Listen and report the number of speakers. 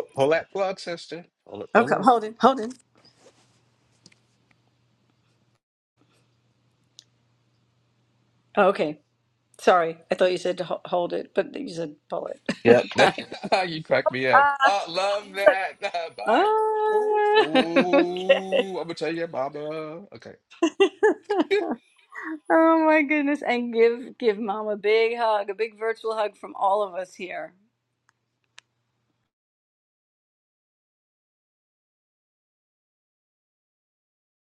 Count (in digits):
2